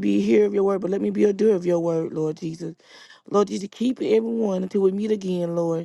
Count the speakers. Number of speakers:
1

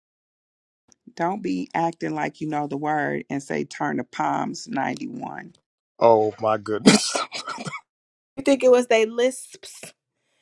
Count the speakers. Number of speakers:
3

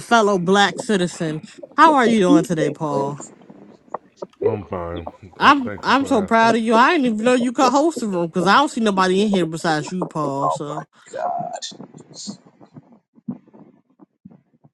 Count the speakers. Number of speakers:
3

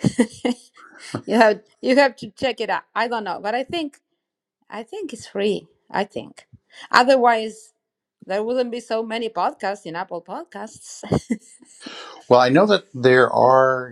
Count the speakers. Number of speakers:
2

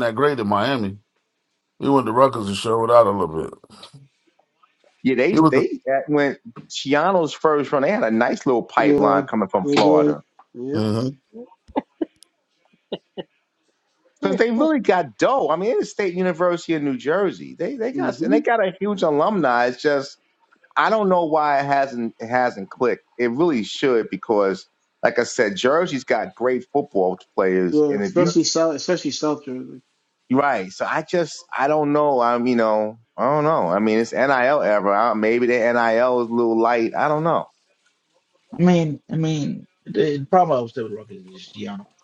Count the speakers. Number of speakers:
4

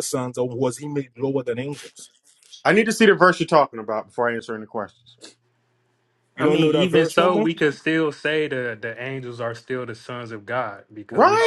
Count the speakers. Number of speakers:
3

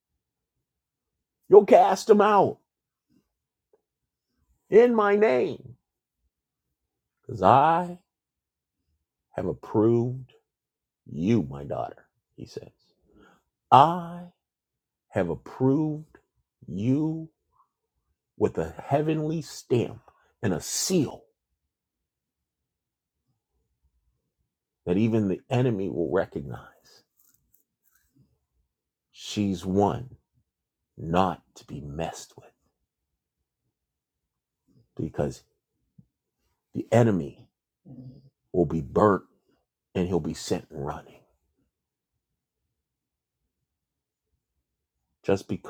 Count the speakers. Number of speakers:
1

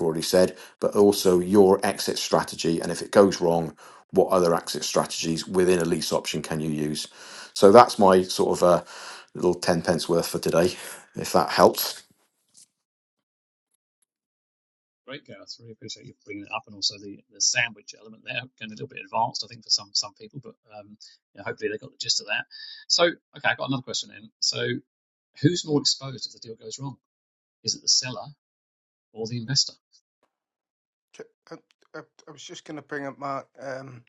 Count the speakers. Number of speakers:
3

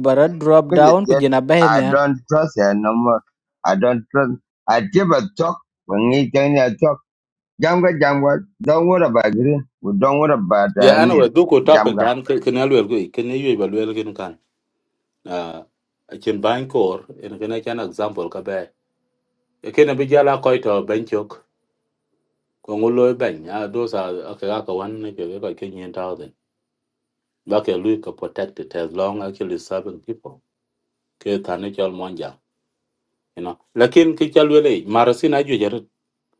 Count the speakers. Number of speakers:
3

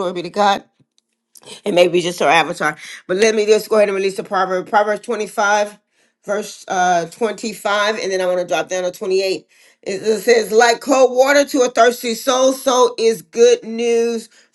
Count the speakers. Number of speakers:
1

